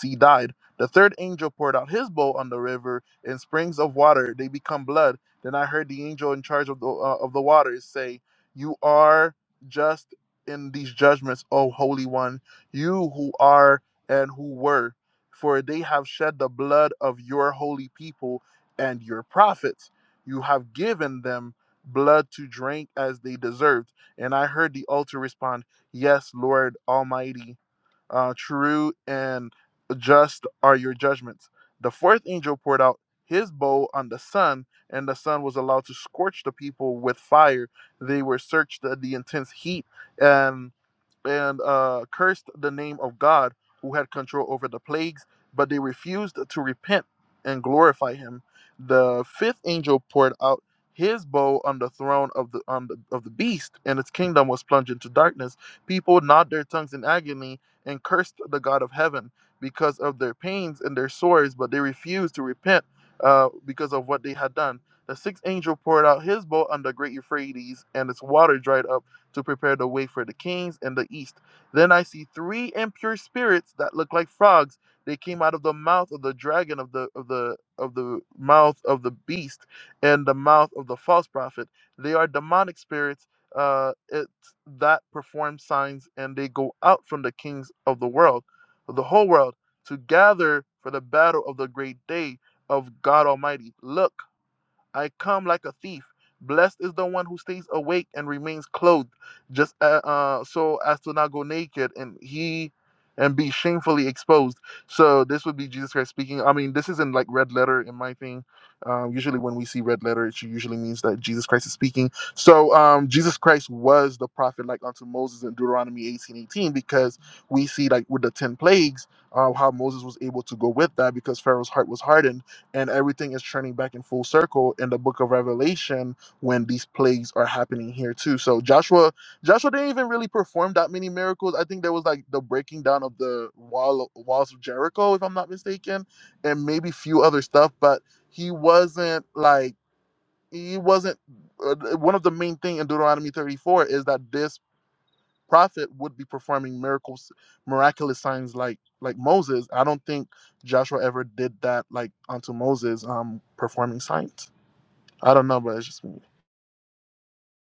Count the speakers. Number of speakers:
one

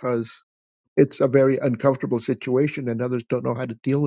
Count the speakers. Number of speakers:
one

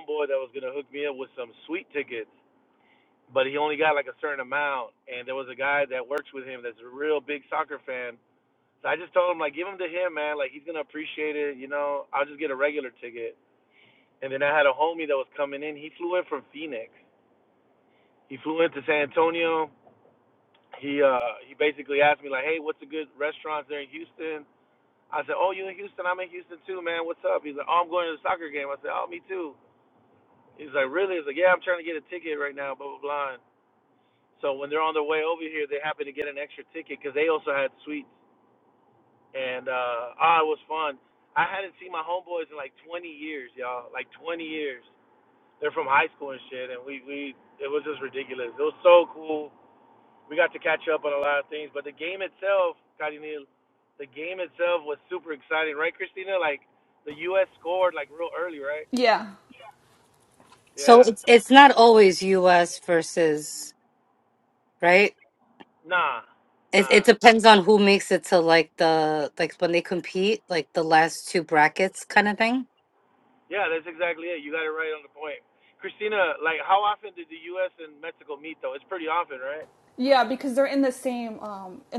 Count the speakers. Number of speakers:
three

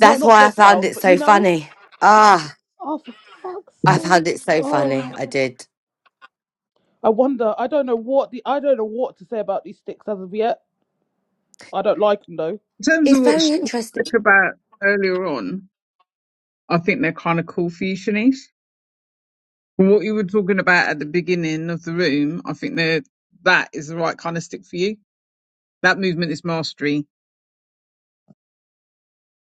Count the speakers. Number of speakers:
three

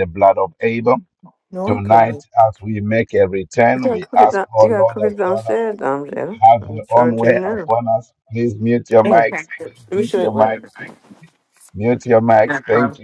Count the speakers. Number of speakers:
two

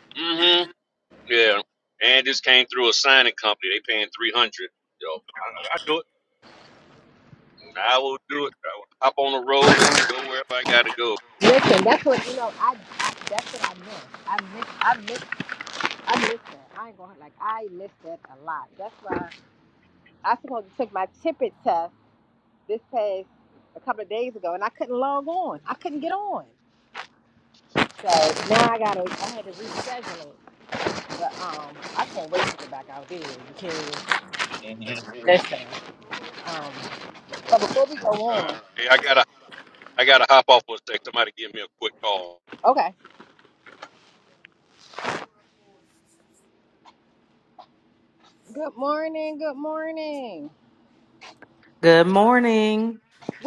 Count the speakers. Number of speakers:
three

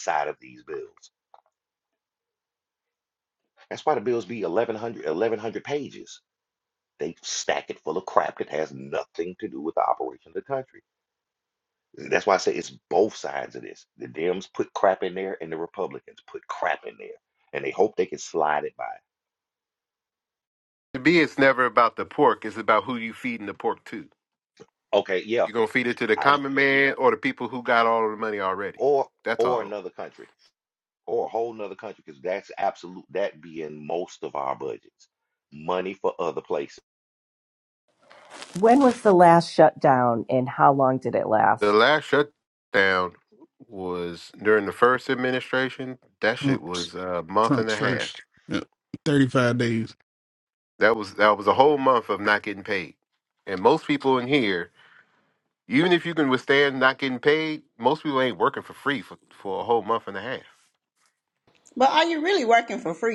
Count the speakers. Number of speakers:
five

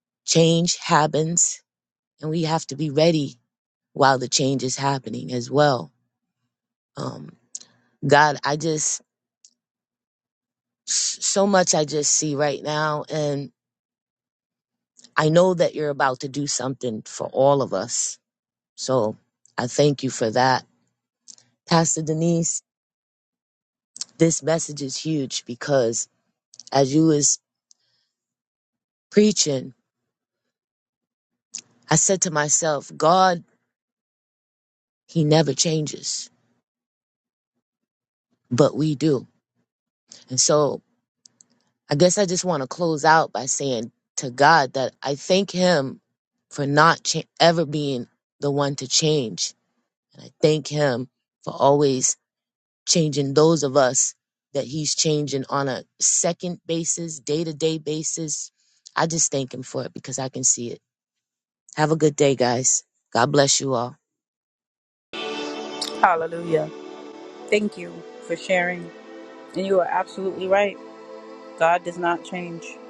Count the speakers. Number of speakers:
two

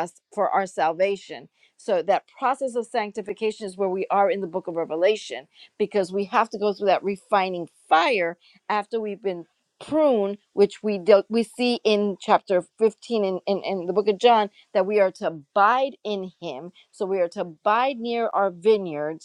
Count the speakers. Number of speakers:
one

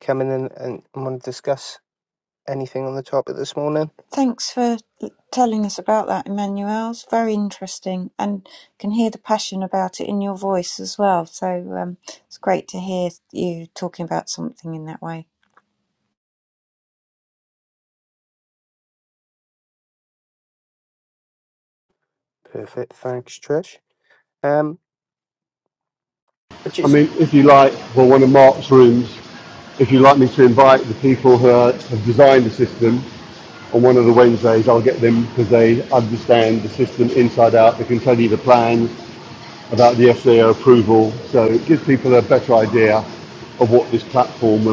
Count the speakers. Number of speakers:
three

